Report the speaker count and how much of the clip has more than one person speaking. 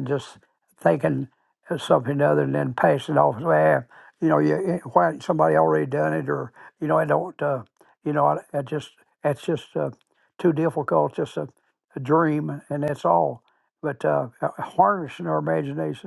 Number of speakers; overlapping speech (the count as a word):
one, no overlap